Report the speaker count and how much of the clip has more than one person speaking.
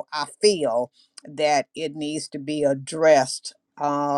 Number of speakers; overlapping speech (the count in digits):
1, no overlap